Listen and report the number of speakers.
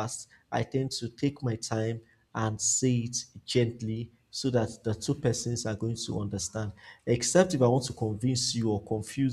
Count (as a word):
one